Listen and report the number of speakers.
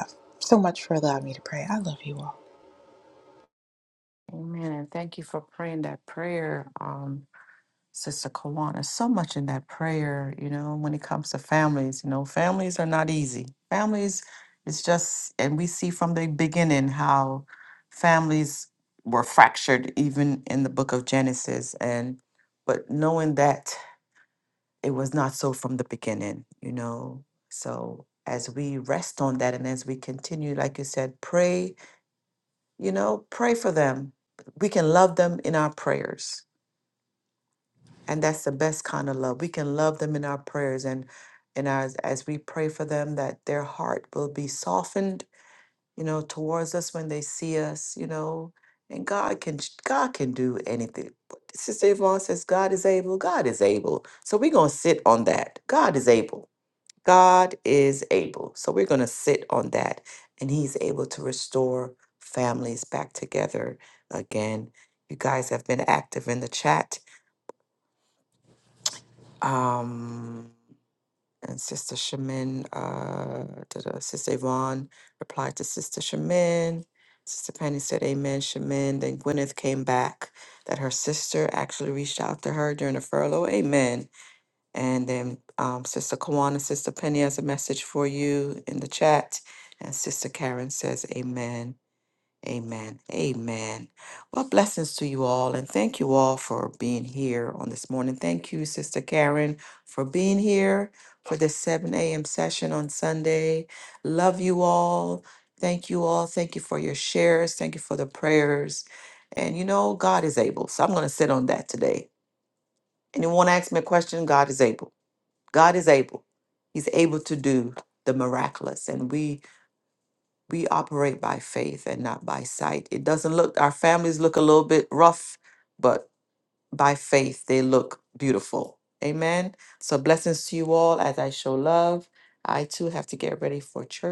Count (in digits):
2